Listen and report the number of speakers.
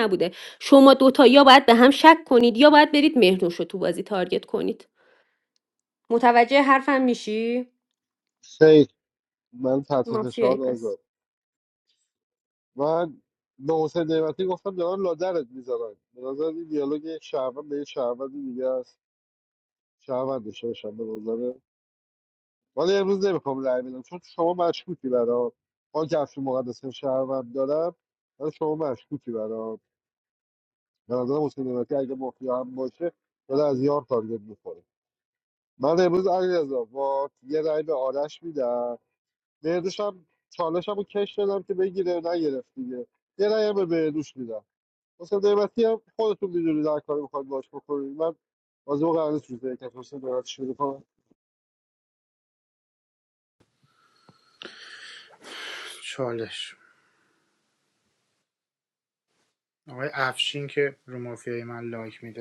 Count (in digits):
3